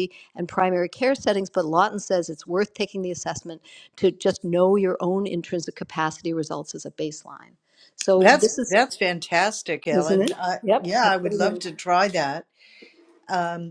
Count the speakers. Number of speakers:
2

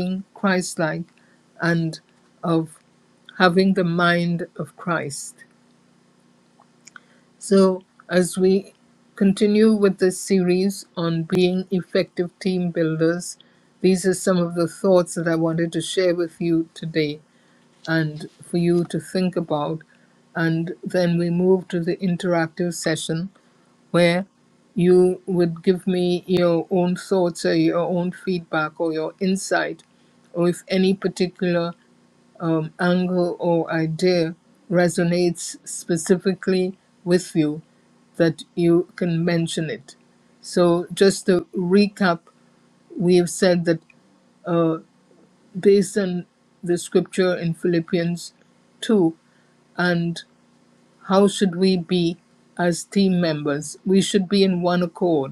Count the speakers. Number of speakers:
1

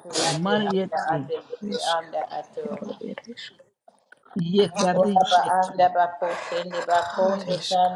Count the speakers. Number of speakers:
3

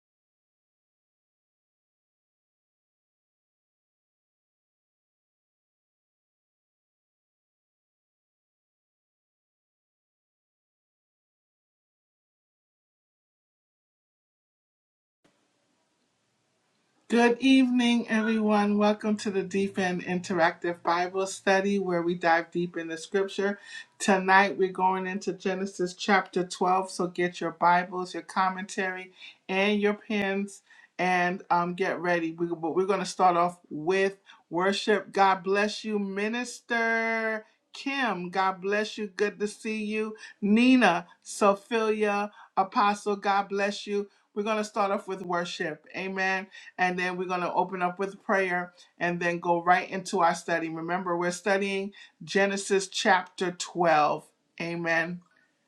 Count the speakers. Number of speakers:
1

